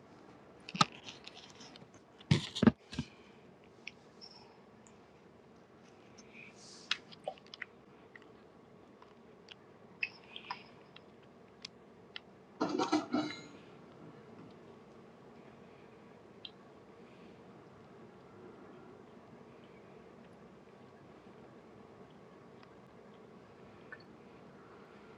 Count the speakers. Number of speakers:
0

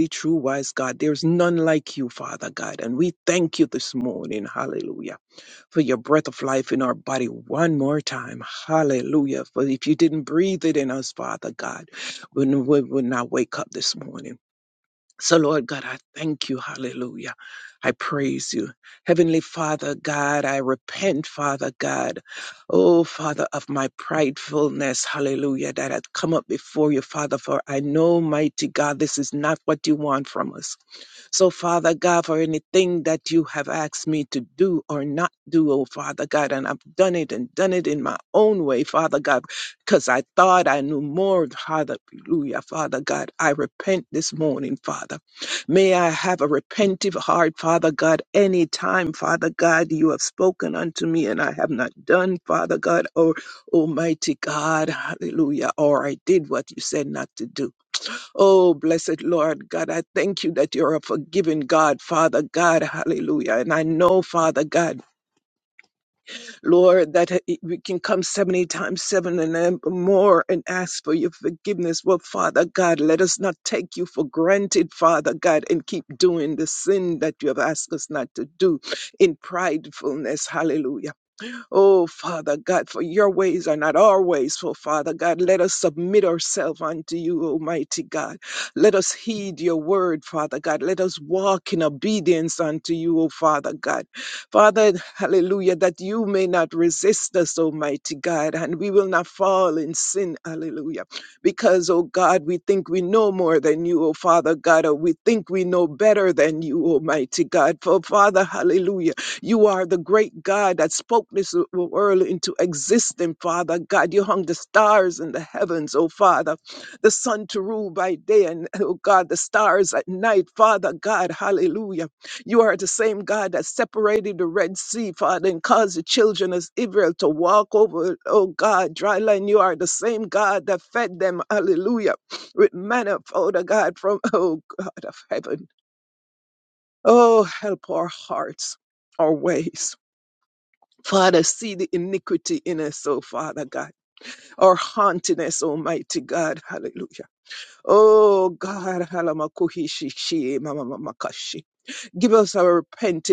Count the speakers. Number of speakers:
1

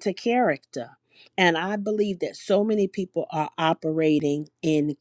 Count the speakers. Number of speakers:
1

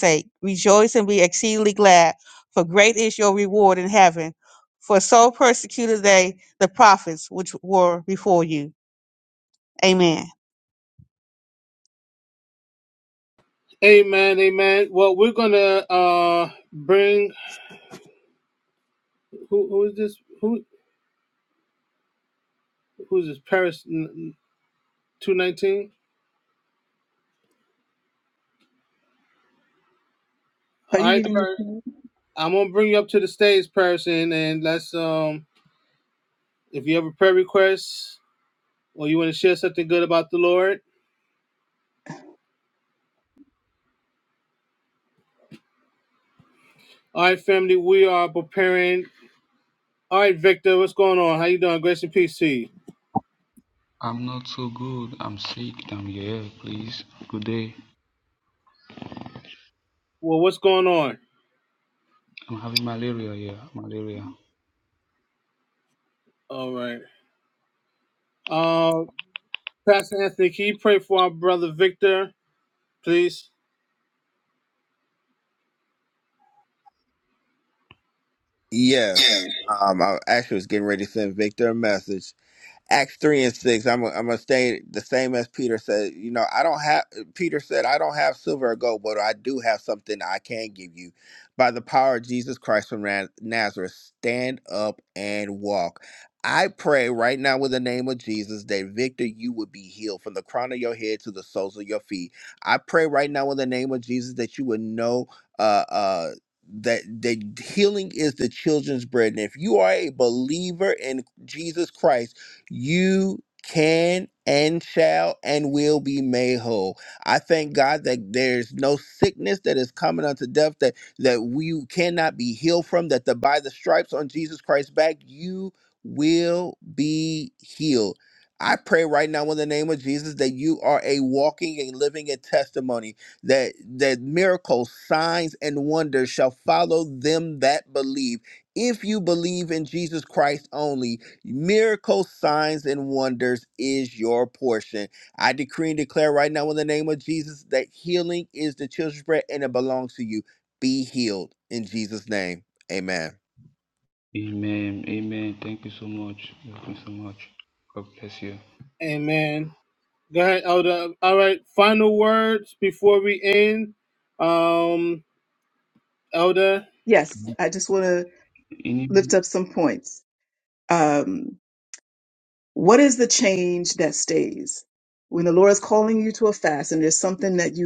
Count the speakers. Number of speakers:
5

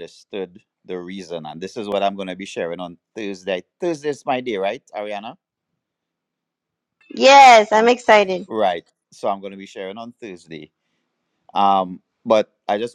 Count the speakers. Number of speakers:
2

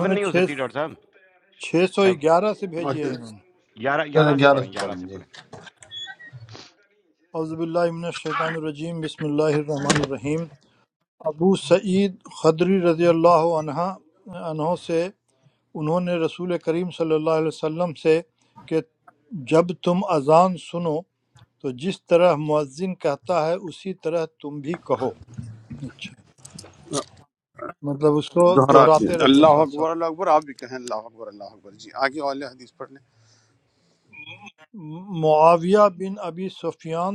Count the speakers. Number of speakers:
3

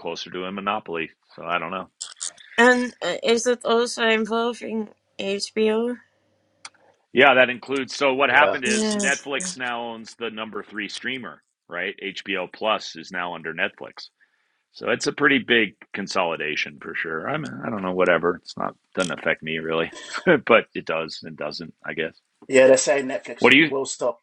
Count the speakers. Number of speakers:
3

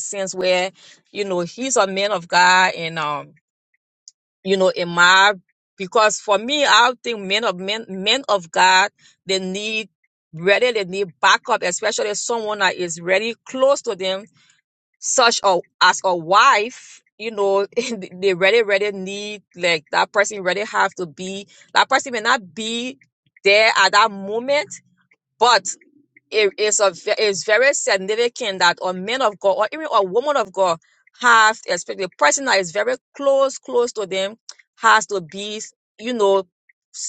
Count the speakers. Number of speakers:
1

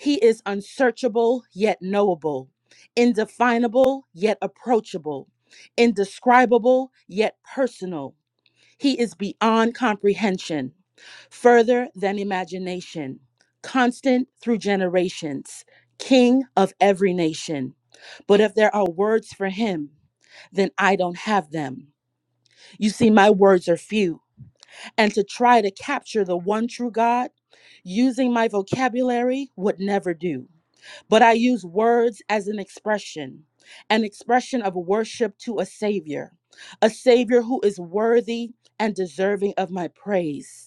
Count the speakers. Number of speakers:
1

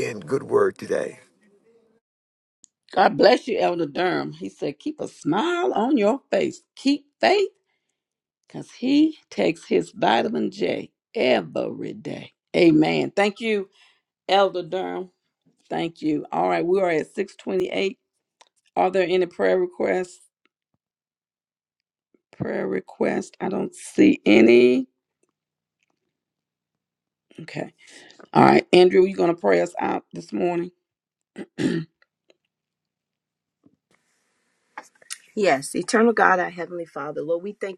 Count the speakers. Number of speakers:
3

